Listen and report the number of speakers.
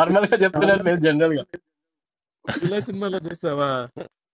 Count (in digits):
2